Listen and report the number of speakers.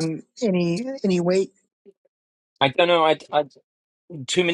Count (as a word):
two